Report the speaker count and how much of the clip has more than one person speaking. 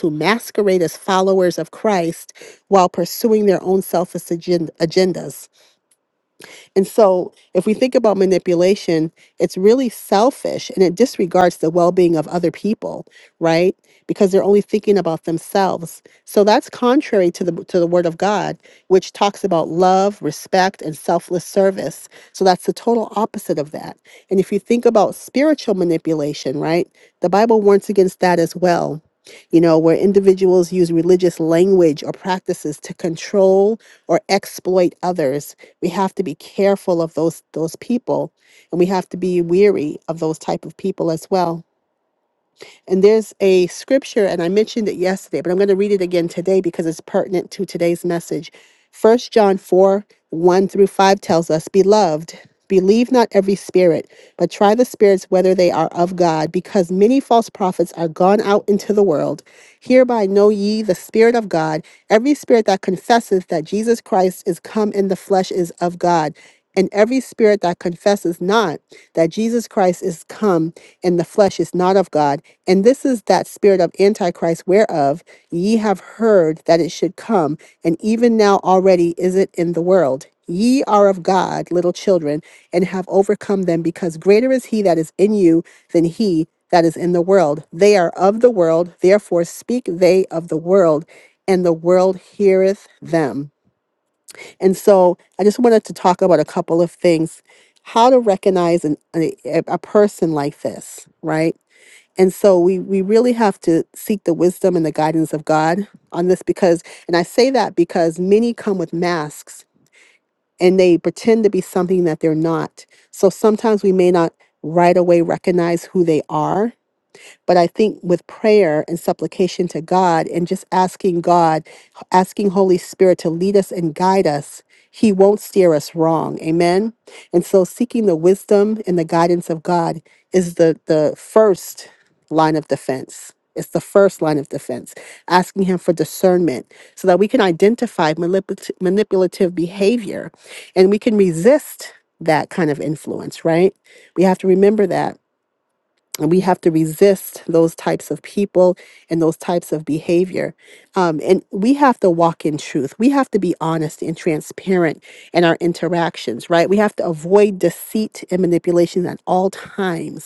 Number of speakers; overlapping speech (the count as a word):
one, no overlap